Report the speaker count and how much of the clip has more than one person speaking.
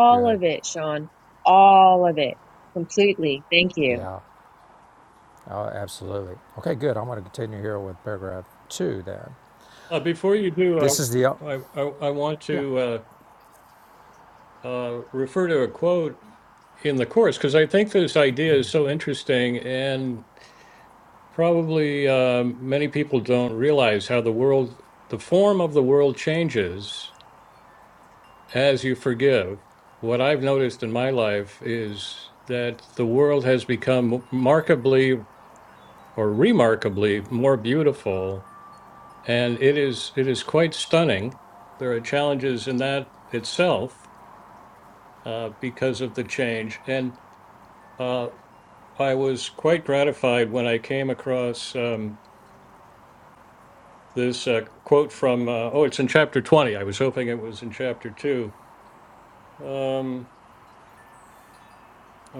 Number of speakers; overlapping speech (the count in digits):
3, about 1%